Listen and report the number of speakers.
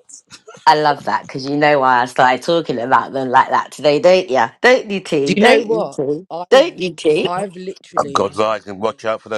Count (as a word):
three